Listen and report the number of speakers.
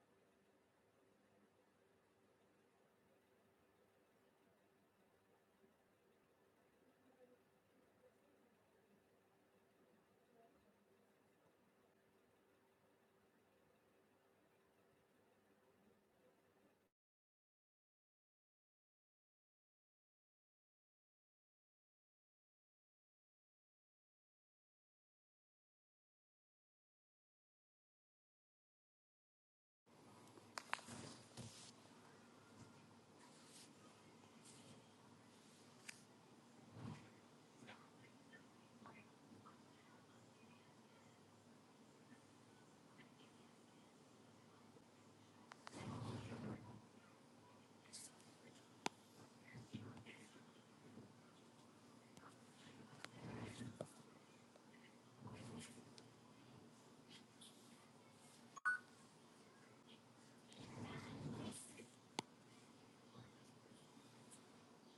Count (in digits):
0